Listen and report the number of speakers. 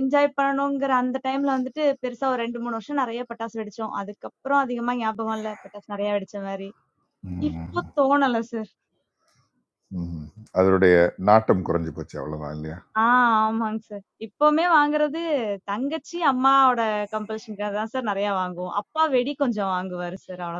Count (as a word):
two